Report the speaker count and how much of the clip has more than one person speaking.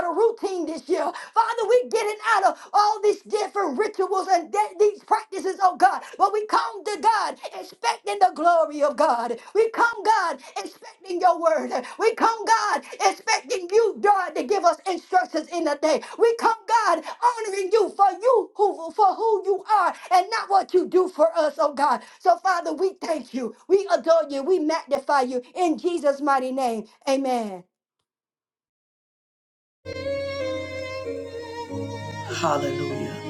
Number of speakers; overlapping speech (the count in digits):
2, no overlap